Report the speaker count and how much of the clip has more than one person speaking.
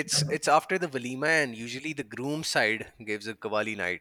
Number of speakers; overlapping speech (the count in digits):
1, no overlap